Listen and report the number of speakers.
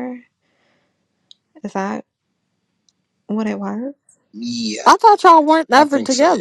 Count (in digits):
3